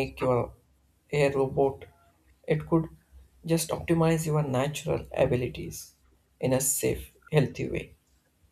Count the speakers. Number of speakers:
one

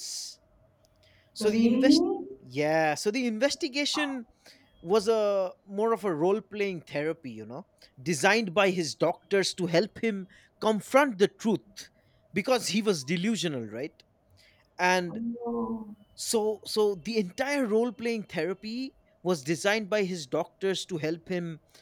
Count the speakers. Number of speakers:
two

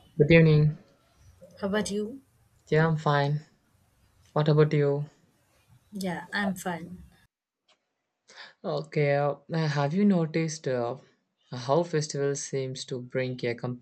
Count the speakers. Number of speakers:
two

